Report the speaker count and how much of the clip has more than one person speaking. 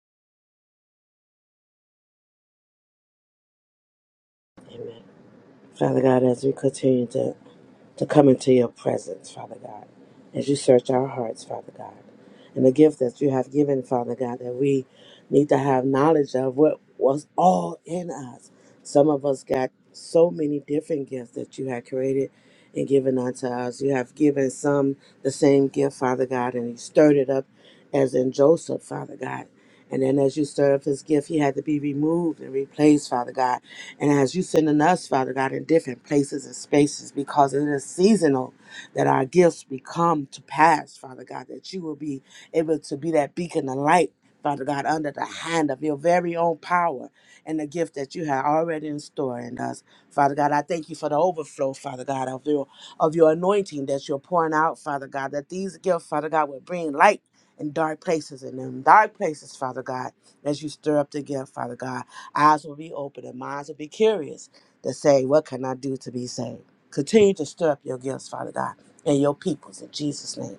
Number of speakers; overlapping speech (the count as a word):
one, no overlap